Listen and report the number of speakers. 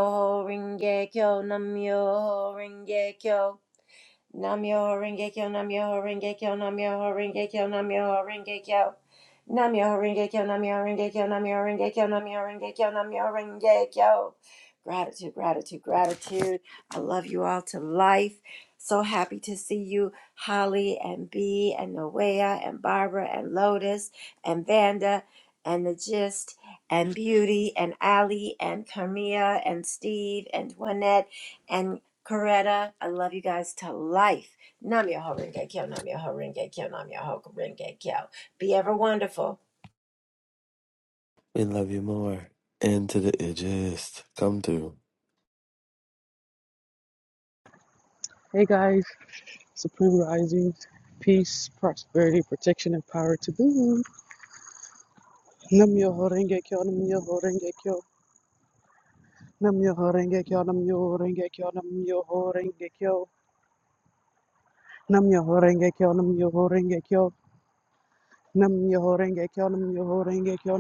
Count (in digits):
3